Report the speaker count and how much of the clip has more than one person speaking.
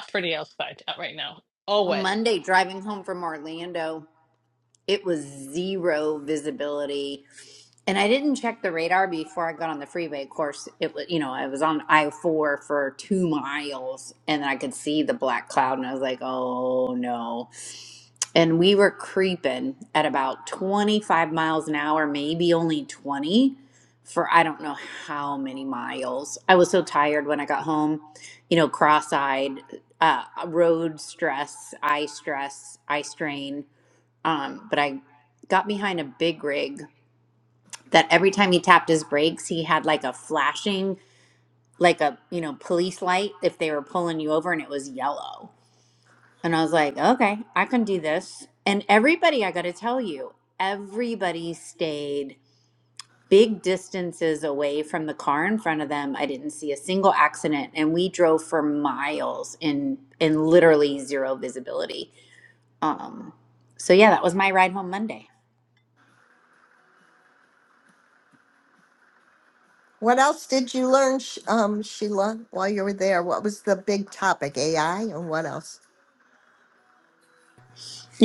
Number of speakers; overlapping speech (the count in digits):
3, under 1%